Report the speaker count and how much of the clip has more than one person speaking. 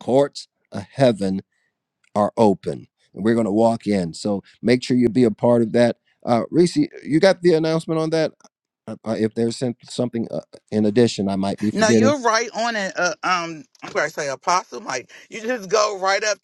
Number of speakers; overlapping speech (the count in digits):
2, about 3%